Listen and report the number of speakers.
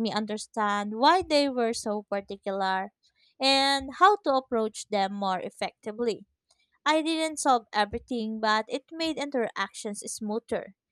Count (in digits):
1